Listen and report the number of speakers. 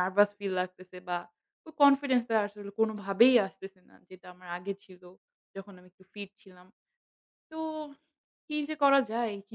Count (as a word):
one